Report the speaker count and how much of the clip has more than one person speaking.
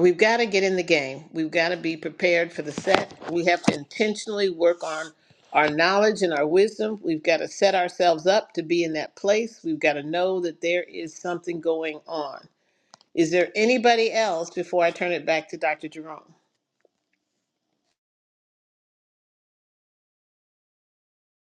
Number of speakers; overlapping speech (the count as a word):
one, no overlap